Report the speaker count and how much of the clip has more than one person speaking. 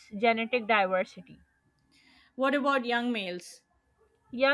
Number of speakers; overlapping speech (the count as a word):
two, no overlap